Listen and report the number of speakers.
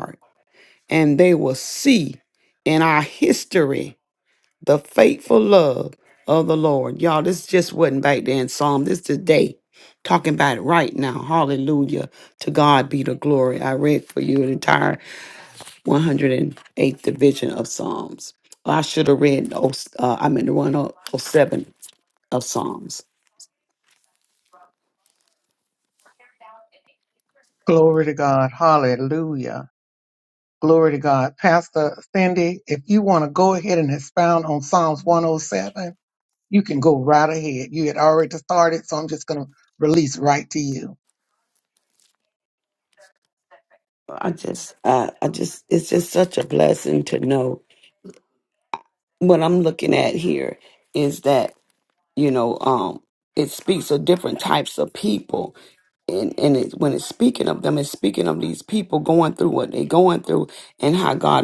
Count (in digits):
2